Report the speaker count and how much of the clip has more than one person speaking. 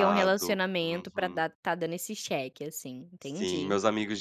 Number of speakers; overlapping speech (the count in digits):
2, about 42%